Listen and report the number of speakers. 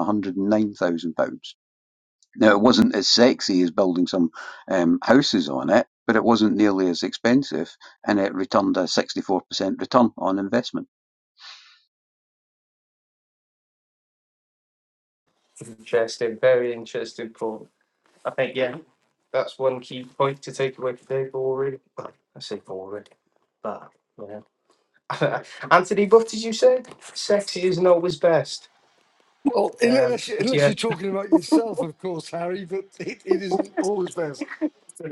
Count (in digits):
3